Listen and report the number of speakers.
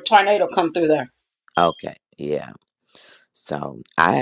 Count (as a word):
two